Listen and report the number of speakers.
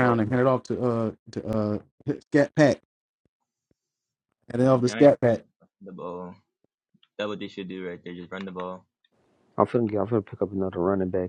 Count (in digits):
3